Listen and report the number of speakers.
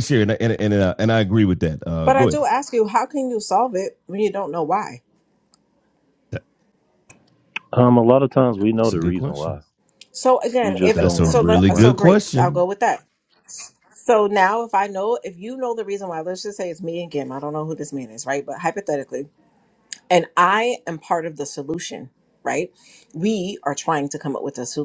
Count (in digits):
3